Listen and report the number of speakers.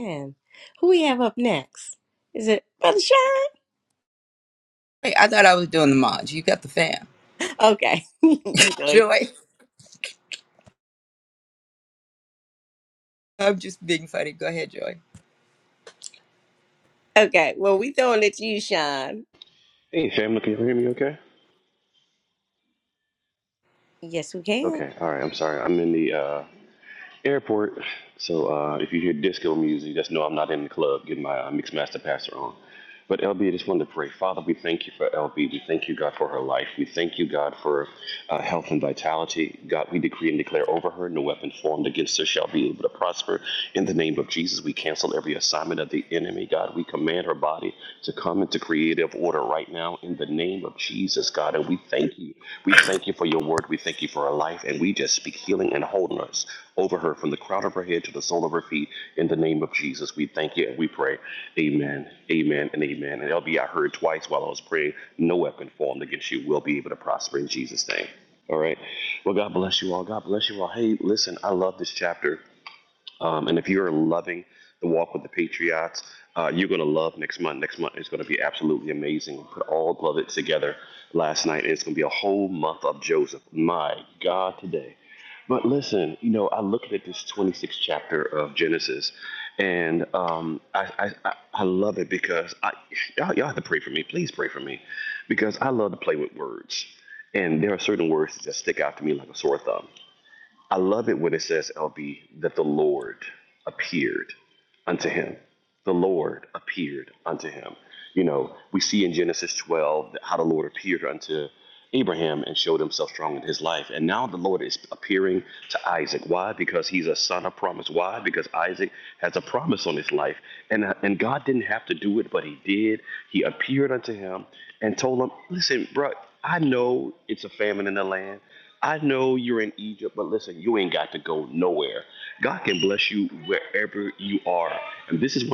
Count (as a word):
three